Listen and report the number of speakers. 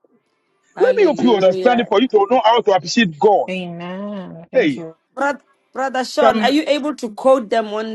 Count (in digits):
3